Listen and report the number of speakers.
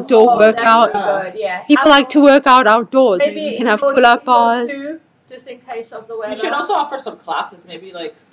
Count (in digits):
3